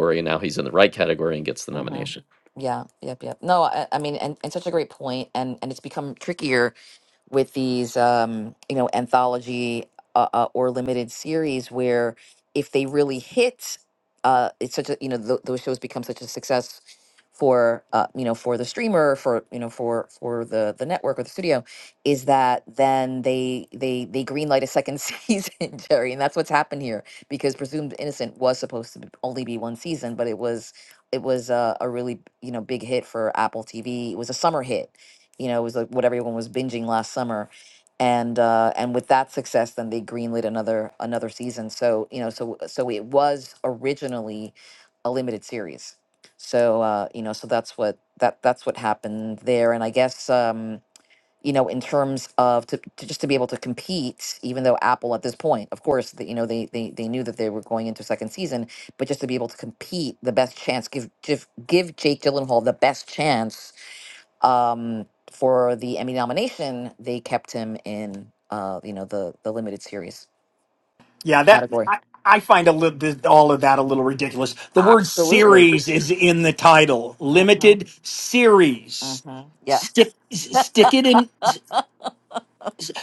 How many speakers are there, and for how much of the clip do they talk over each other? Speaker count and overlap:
3, about 2%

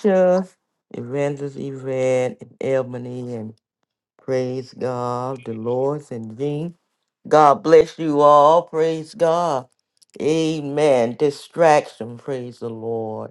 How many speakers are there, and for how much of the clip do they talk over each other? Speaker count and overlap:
1, no overlap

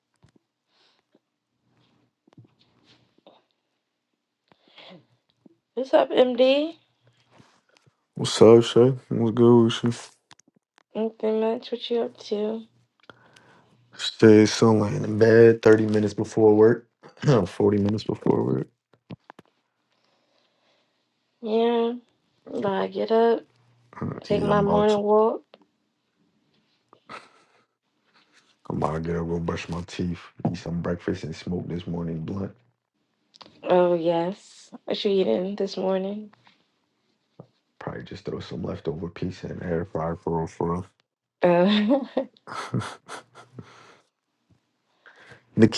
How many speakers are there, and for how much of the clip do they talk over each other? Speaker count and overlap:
2, about 2%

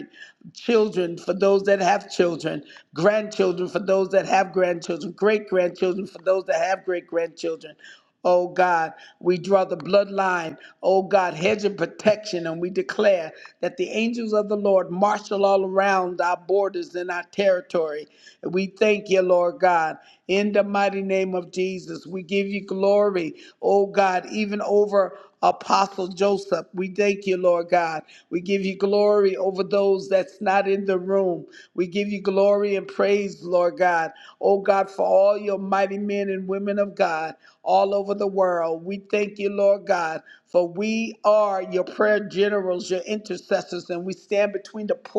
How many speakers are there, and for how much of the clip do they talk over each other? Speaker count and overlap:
1, no overlap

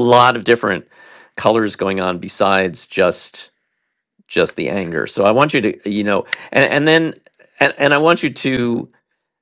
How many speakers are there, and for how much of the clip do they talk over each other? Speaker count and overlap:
1, no overlap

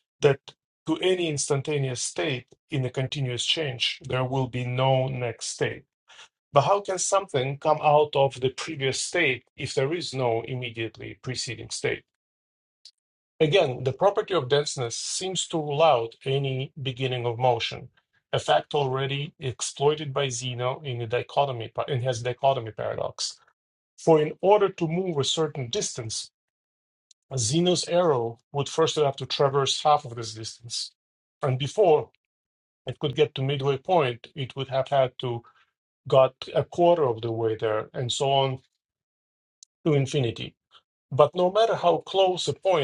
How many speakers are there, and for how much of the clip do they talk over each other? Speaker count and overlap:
1, no overlap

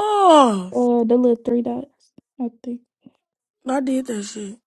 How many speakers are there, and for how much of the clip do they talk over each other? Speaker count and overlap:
2, no overlap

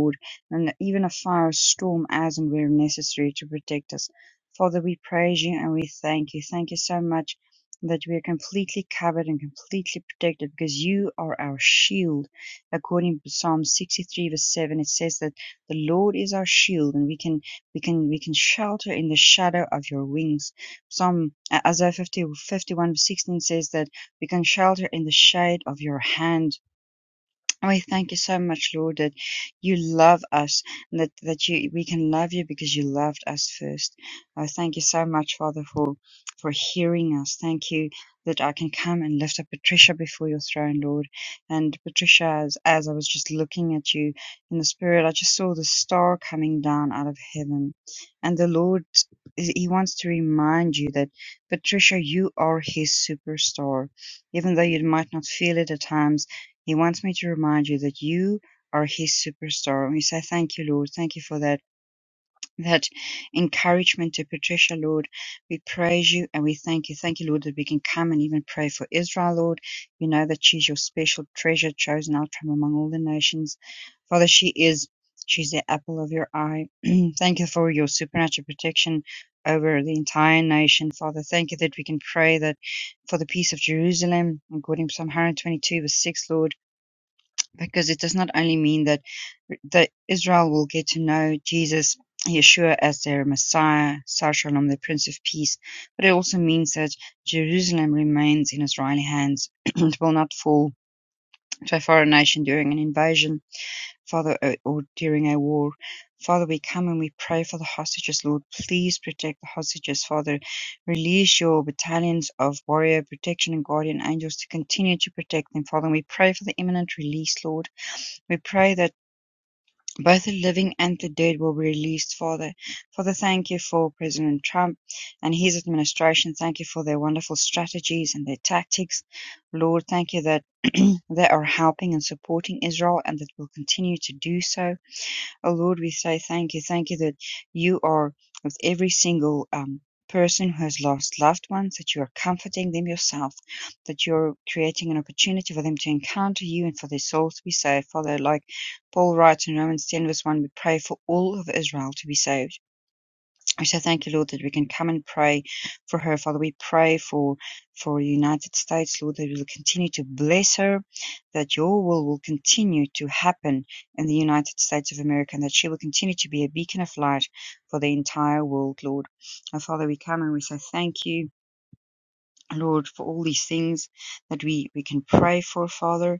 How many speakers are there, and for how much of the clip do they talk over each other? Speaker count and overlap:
1, no overlap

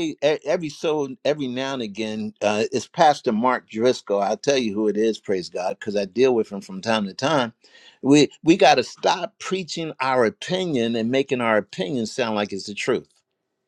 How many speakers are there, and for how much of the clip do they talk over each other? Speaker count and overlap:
1, no overlap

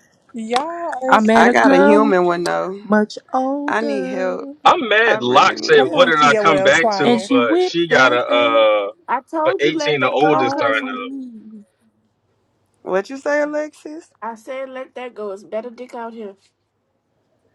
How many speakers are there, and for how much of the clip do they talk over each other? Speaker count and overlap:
5, about 40%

